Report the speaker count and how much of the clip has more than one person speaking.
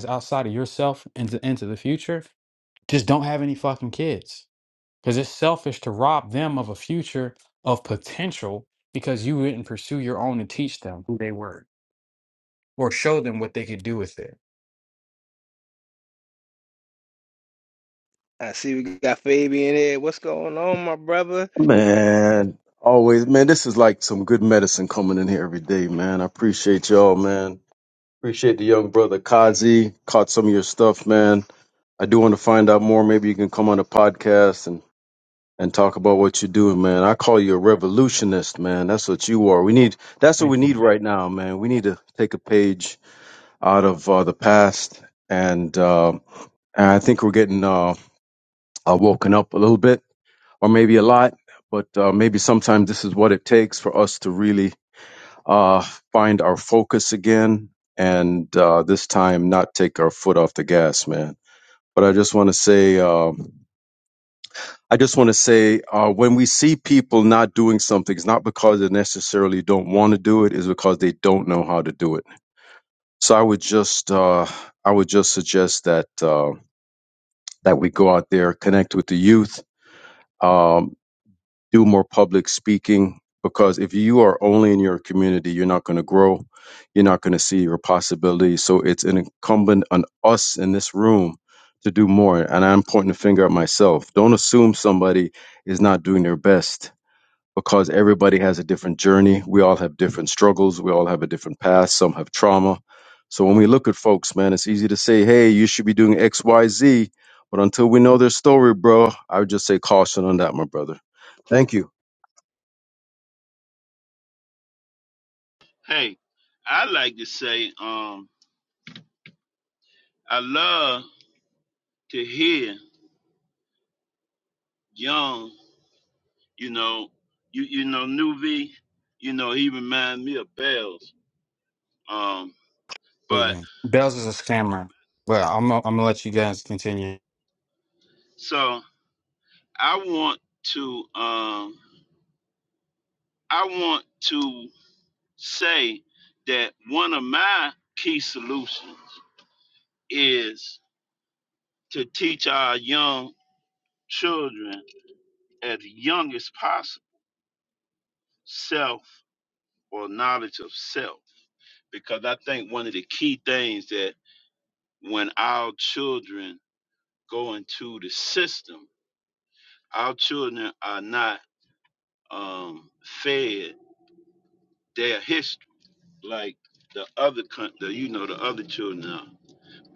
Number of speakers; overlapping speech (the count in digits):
4, under 1%